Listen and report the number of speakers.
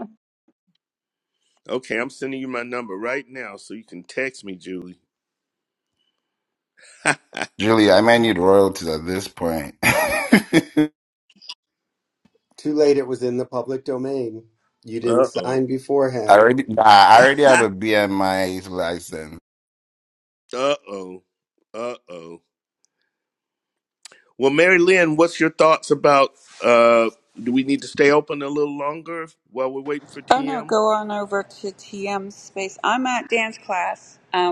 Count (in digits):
4